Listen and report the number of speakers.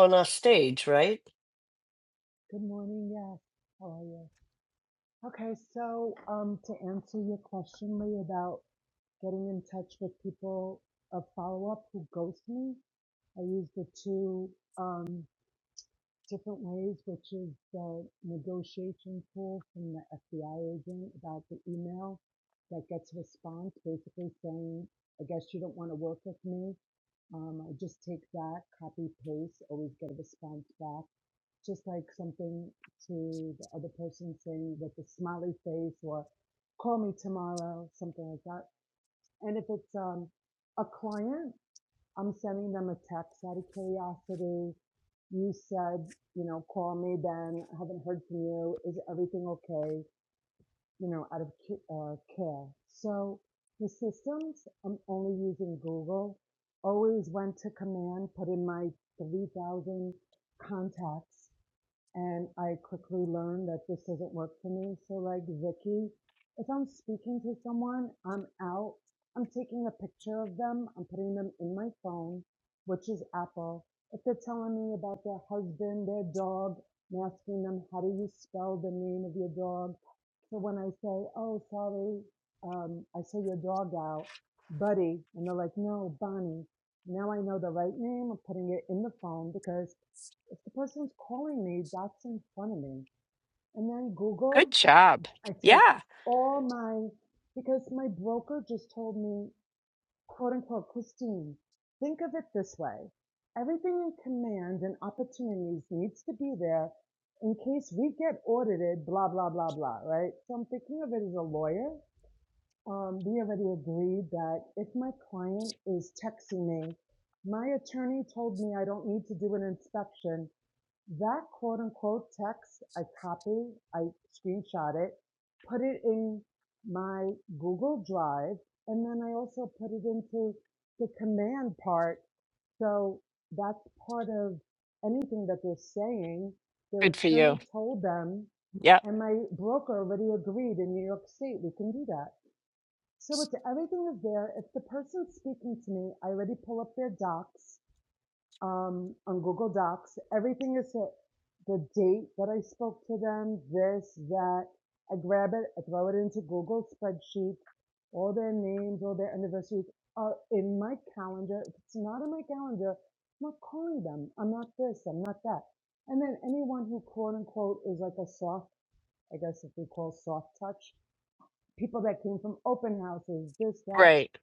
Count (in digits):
3